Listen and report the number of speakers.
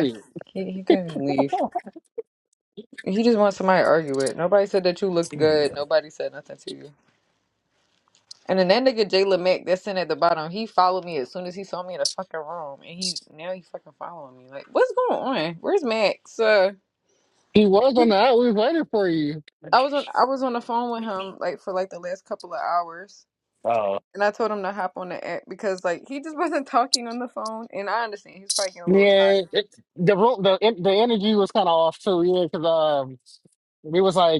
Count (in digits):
2